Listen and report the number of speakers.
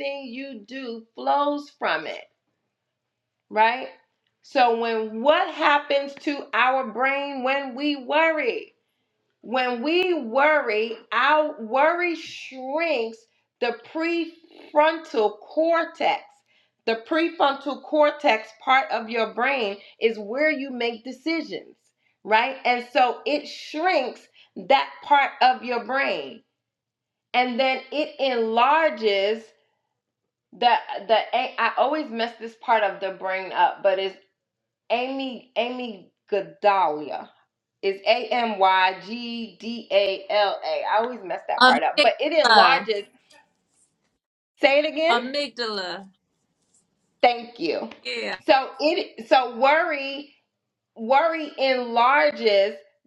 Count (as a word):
two